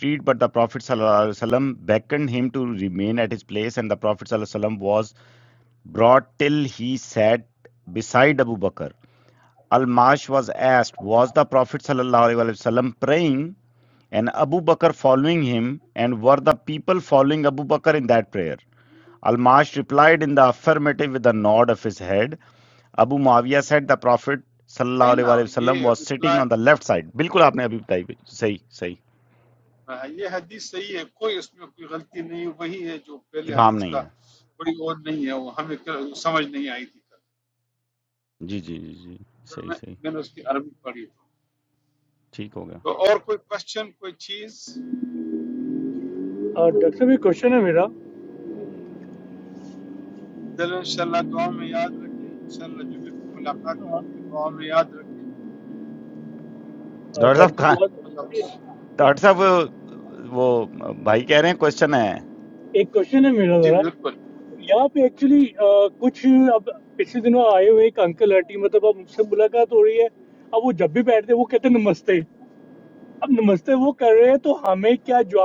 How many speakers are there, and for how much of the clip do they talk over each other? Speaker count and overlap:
three, about 4%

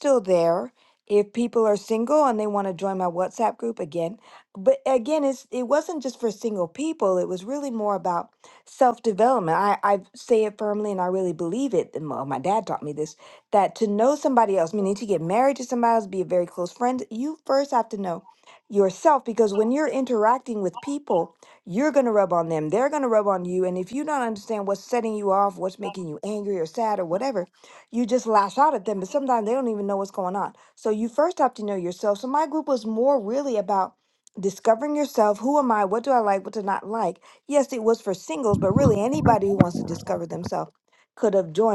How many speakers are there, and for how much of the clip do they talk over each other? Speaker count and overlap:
one, no overlap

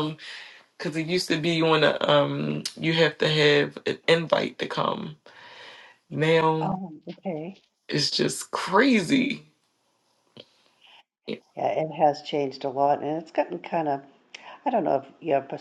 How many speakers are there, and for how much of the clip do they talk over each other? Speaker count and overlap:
two, about 1%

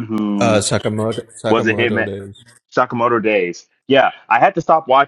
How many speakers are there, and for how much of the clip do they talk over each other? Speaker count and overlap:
two, about 16%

